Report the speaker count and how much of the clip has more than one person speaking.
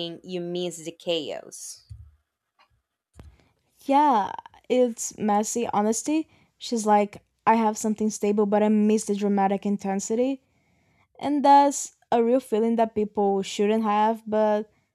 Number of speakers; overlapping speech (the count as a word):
two, no overlap